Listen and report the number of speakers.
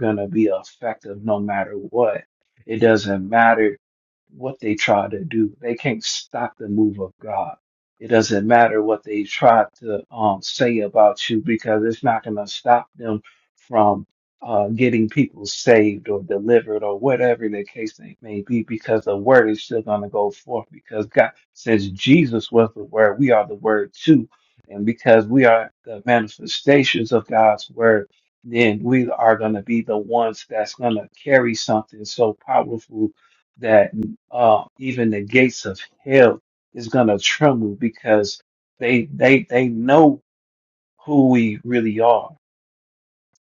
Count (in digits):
1